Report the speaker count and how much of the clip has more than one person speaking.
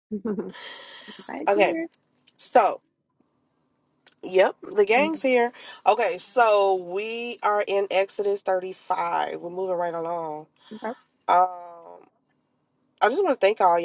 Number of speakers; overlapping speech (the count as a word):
two, about 3%